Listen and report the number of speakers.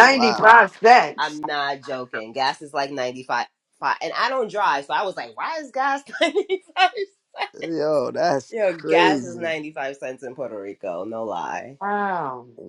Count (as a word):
three